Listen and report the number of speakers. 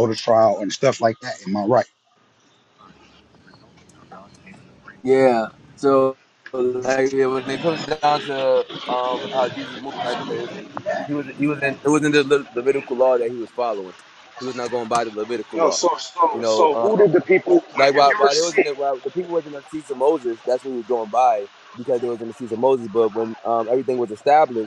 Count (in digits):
2